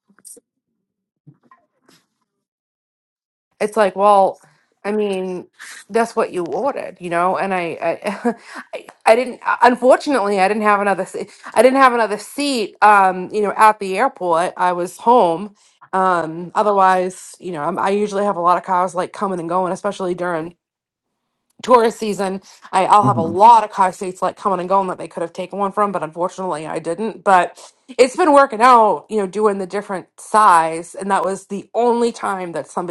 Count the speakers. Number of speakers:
1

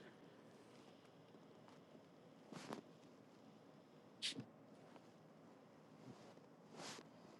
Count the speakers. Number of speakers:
0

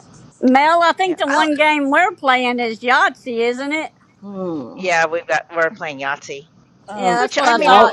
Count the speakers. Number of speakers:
3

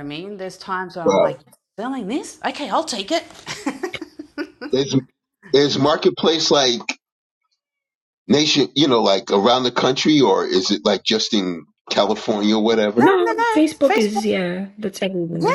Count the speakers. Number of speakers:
3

